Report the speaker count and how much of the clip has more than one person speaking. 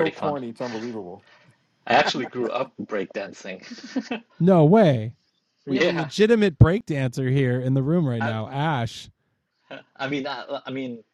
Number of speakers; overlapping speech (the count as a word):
three, about 10%